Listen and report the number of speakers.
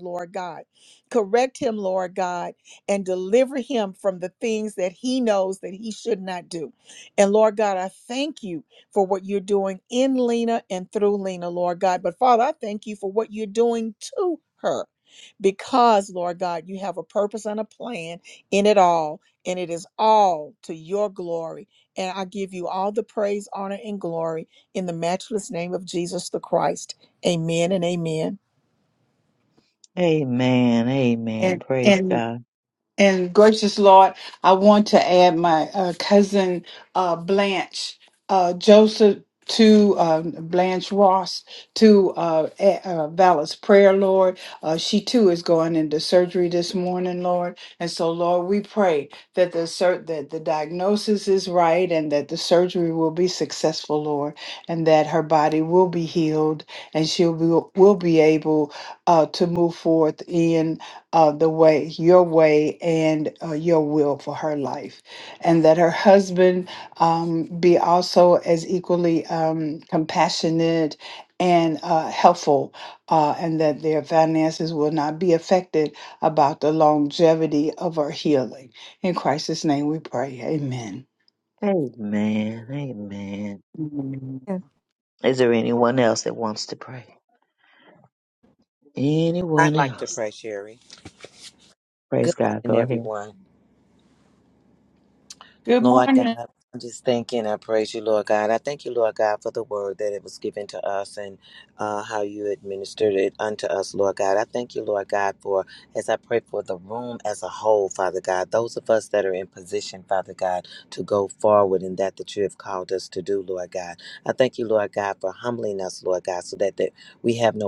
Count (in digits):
4